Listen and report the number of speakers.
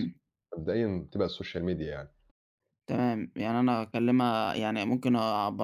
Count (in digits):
2